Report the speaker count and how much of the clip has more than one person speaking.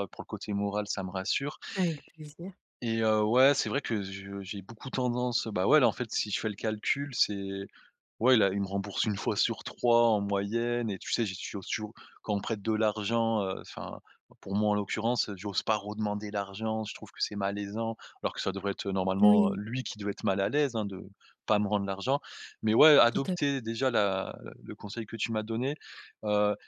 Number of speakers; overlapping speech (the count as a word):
two, about 2%